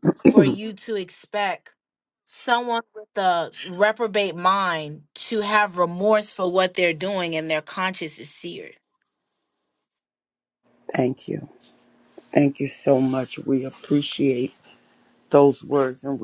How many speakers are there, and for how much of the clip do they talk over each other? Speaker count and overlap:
two, no overlap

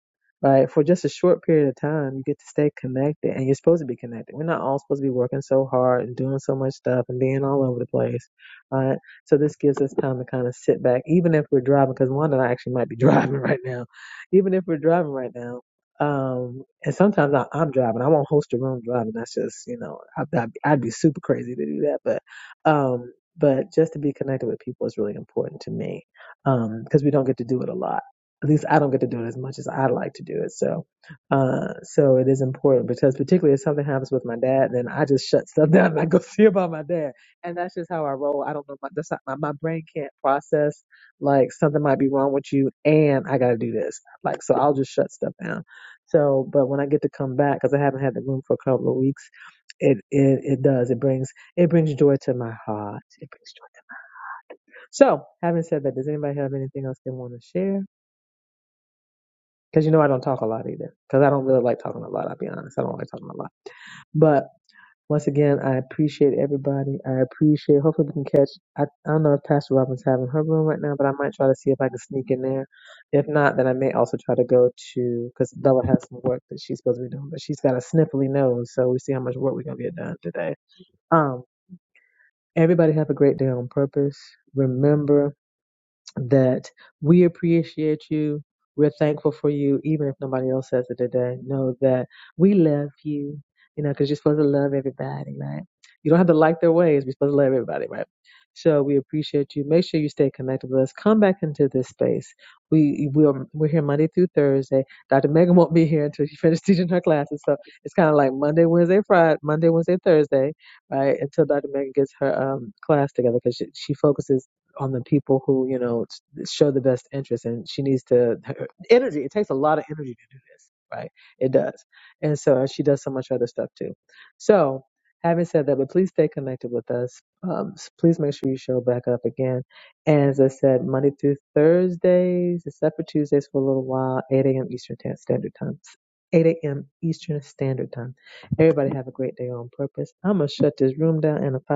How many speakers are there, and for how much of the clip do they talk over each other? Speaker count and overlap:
one, no overlap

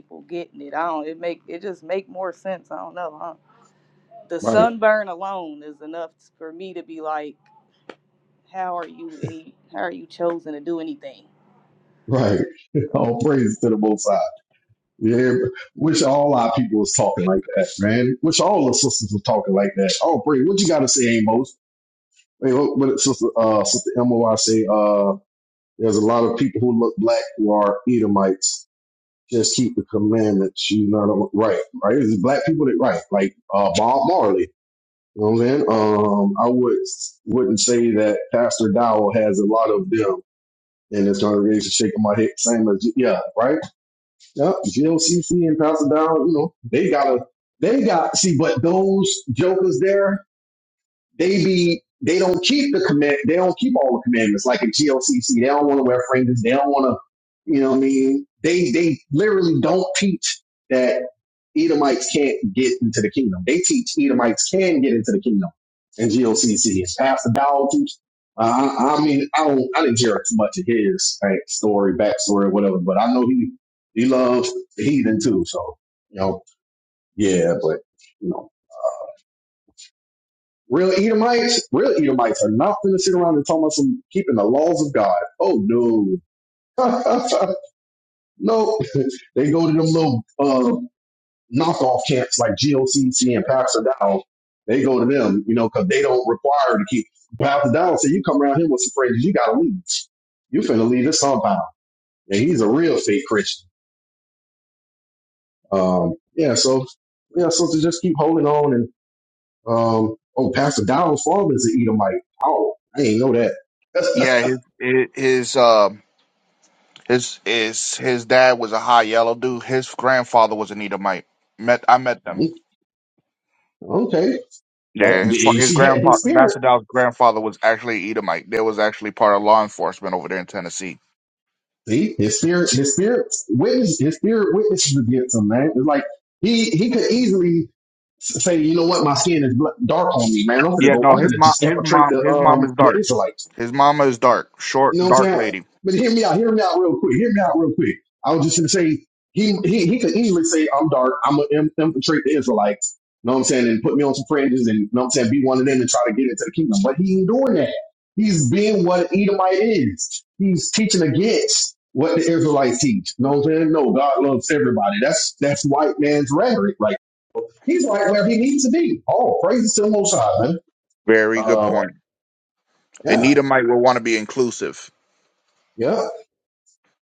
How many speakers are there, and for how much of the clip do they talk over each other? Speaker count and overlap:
three, about 3%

